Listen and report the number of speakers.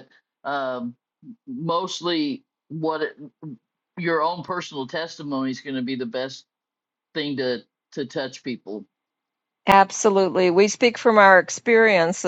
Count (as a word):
two